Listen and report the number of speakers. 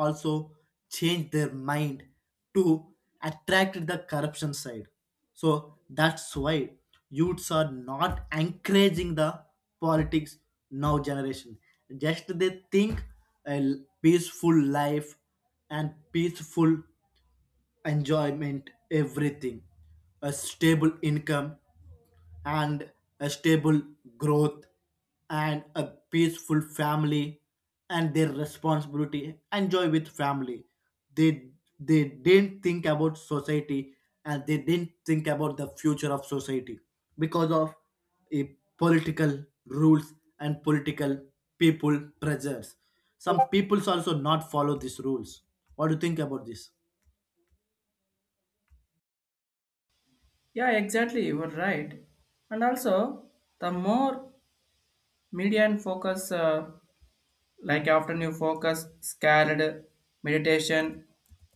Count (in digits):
2